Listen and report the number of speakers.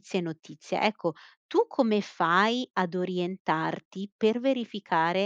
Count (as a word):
one